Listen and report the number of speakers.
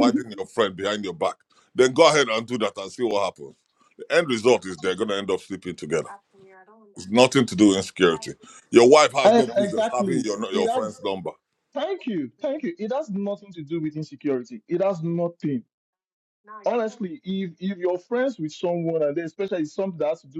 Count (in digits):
2